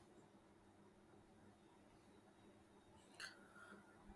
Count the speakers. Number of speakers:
0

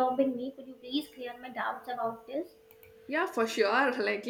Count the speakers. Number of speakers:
2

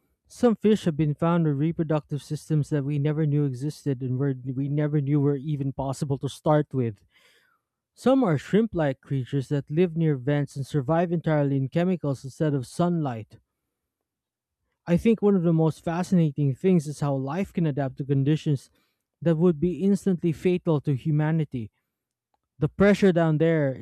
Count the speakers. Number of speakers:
1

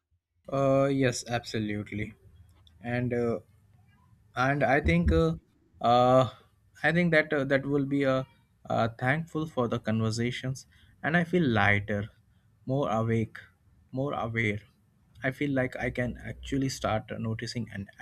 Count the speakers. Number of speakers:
1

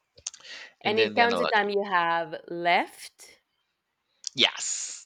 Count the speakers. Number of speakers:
2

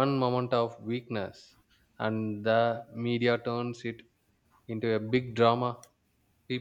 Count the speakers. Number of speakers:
1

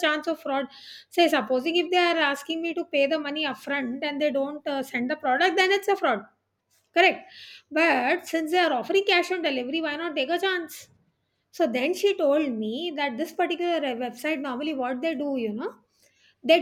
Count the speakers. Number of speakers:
1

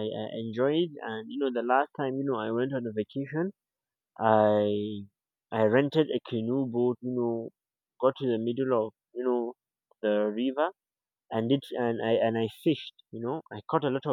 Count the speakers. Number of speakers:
1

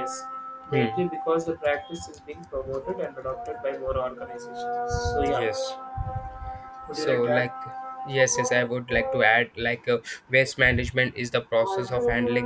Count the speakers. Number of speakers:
2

